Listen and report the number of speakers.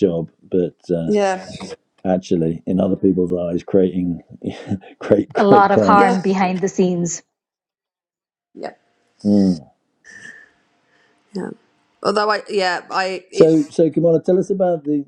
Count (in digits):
3